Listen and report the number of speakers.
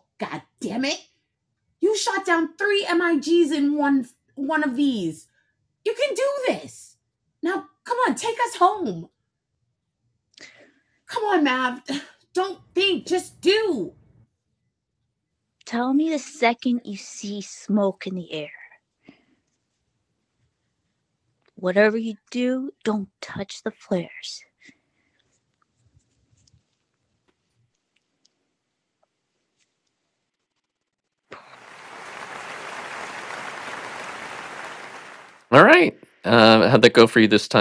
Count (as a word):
three